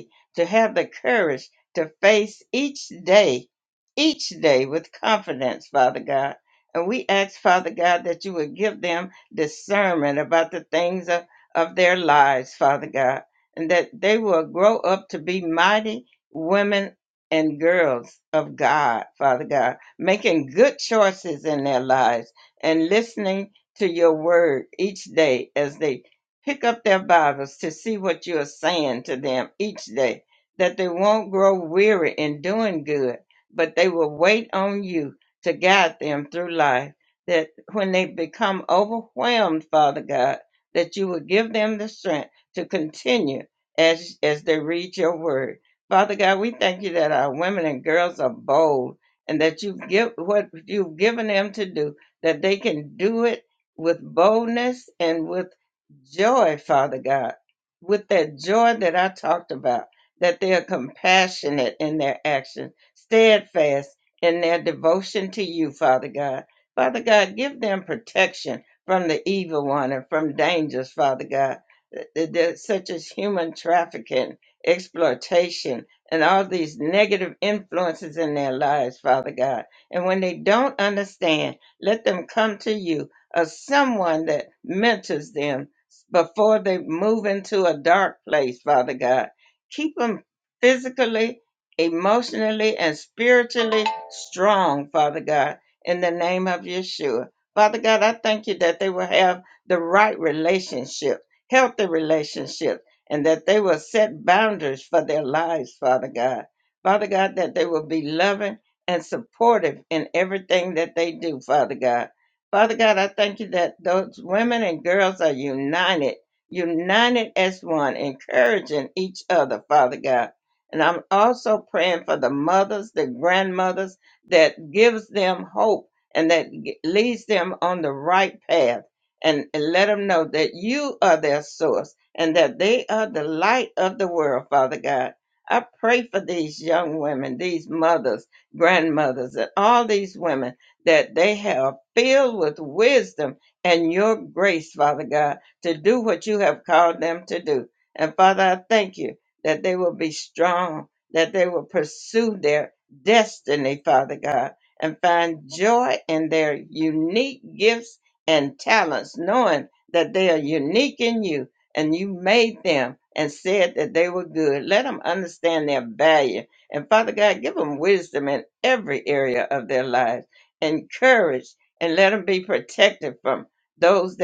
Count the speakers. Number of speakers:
one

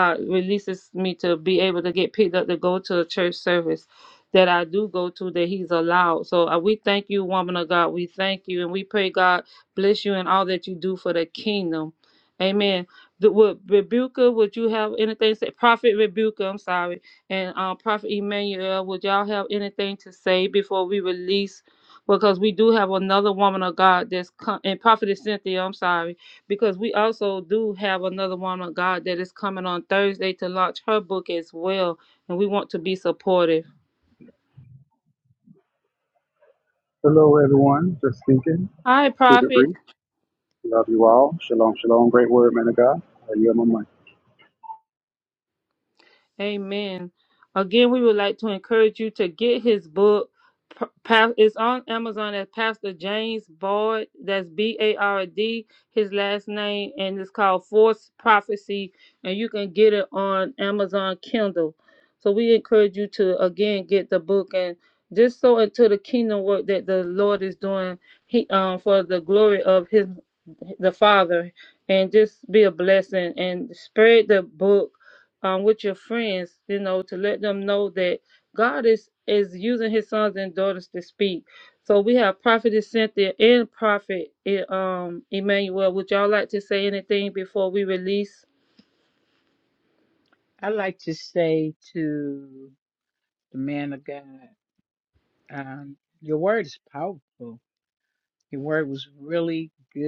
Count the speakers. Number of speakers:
three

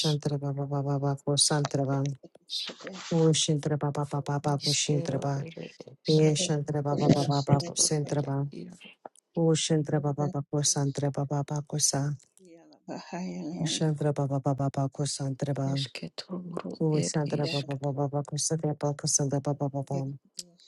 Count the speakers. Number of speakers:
three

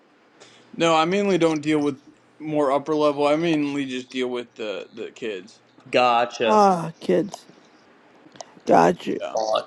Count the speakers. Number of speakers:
three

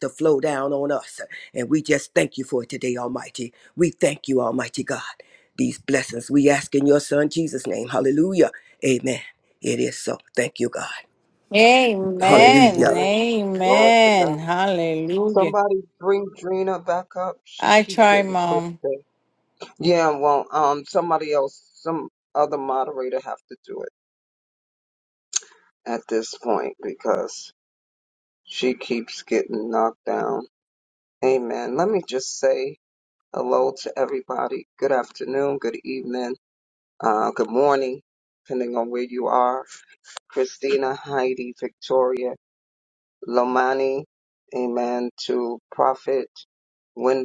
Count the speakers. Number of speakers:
three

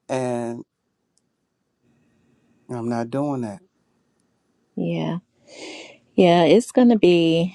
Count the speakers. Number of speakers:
two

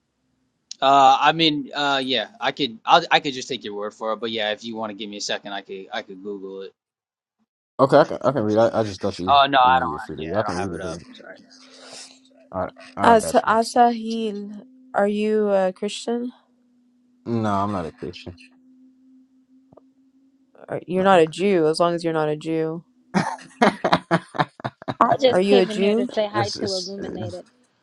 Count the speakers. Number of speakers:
four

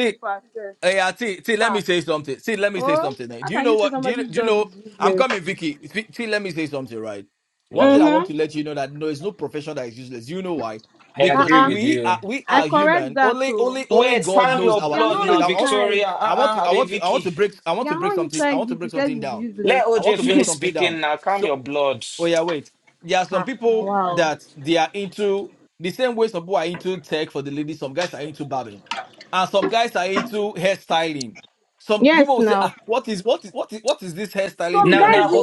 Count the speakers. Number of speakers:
three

